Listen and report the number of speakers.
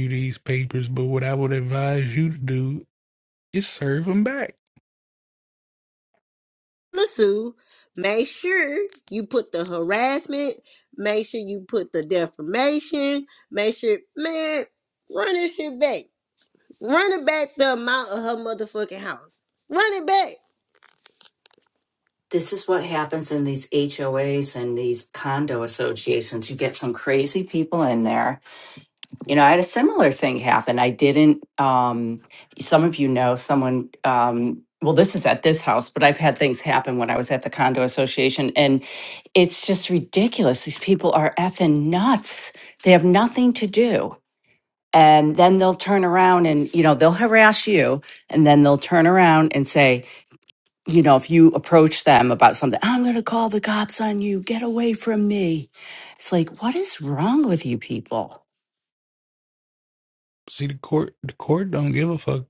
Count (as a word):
three